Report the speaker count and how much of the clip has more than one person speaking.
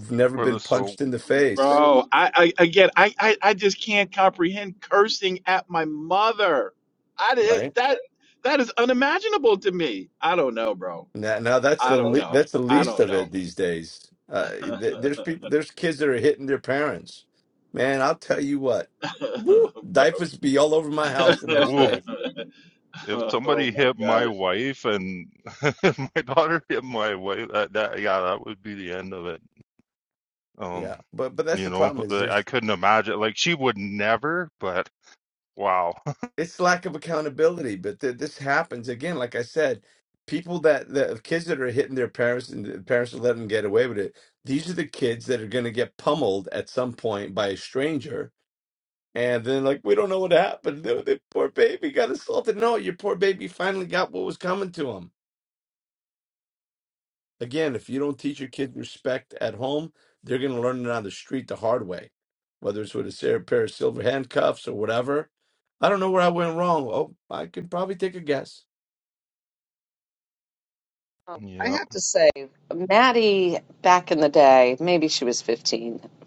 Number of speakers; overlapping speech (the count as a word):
four, about 6%